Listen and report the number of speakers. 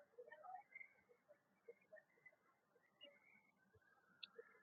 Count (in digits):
0